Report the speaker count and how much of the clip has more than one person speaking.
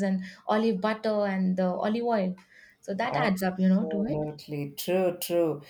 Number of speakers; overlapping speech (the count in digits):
2, about 11%